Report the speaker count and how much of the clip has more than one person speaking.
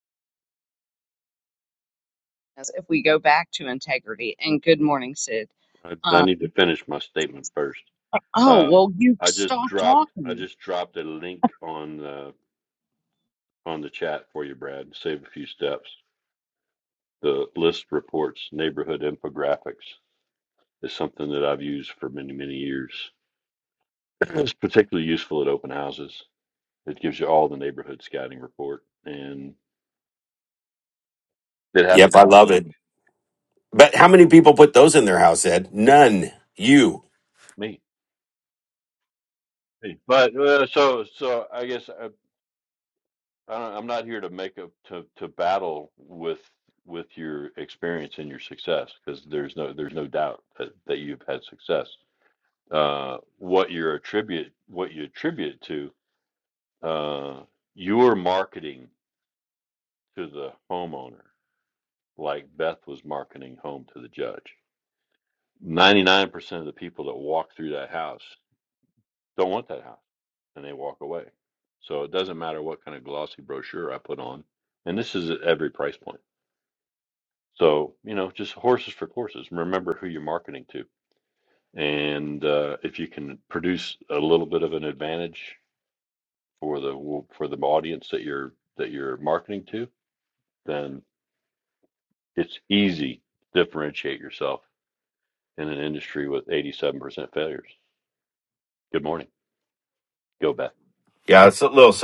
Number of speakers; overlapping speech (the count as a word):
three, about 2%